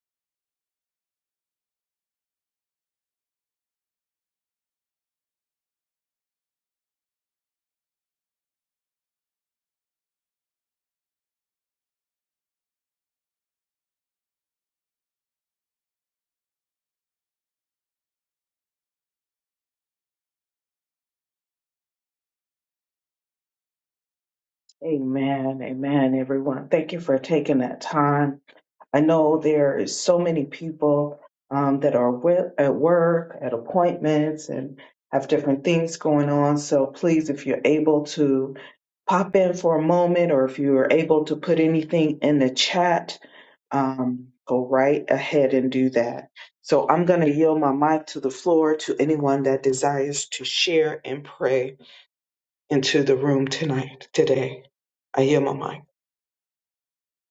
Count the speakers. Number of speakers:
1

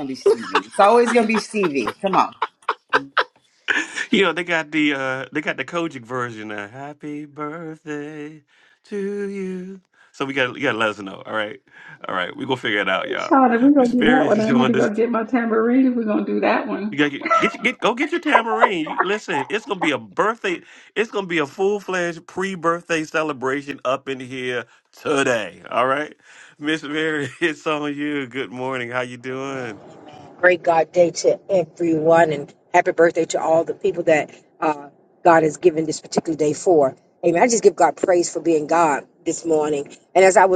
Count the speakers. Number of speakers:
4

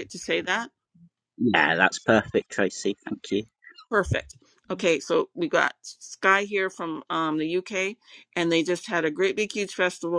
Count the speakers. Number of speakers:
2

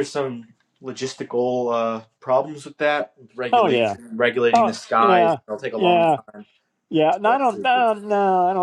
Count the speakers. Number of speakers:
2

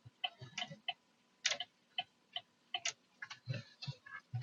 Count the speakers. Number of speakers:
0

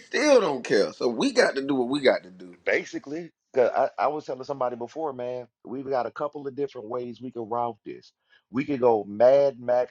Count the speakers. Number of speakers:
2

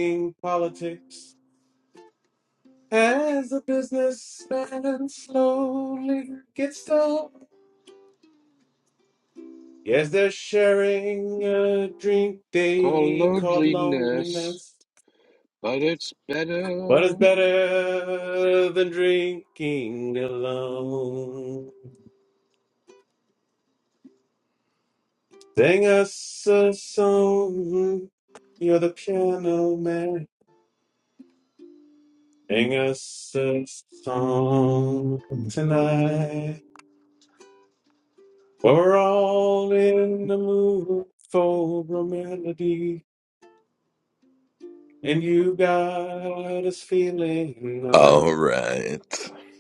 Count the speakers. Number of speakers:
3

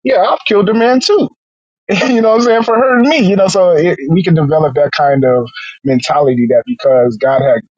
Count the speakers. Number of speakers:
1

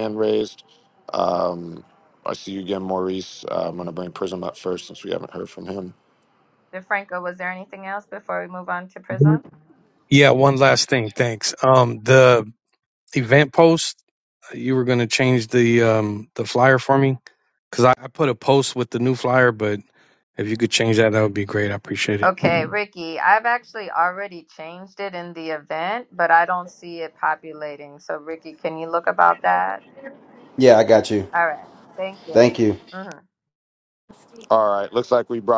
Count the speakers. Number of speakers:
4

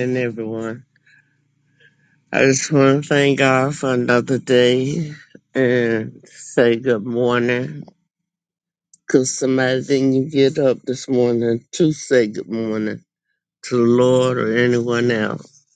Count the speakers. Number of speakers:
1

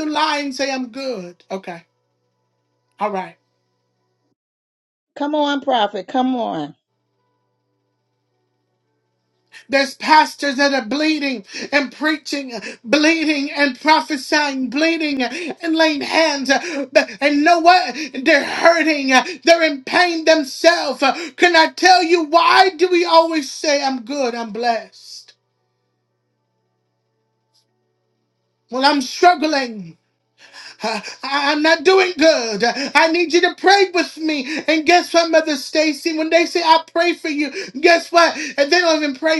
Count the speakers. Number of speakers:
2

